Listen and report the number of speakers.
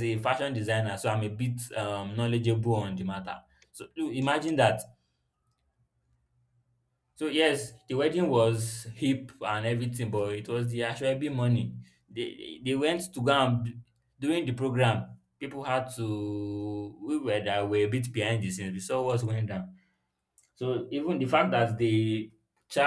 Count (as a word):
one